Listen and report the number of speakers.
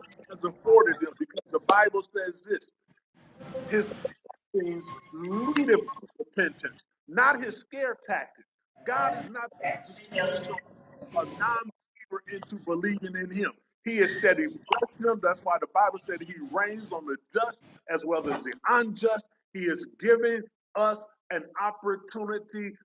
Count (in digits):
1